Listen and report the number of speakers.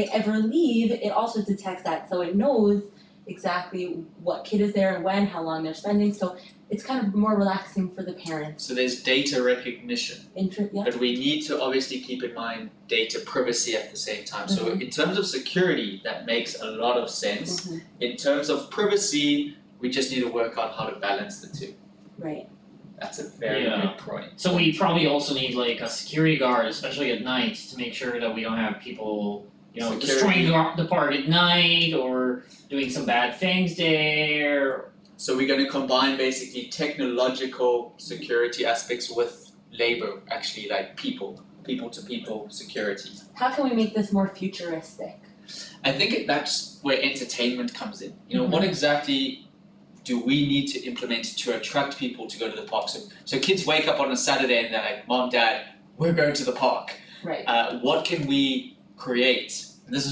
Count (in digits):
3